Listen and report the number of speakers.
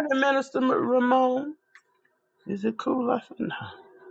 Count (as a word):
one